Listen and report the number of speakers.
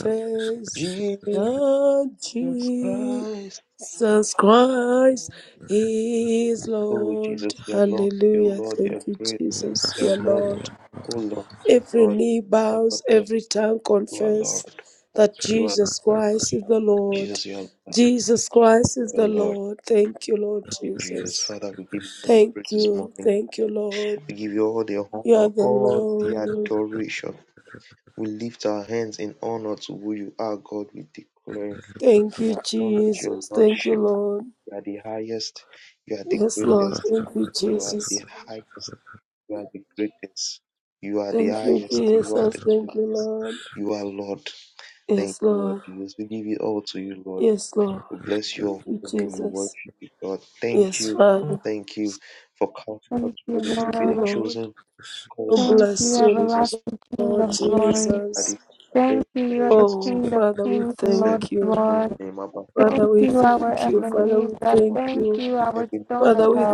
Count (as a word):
three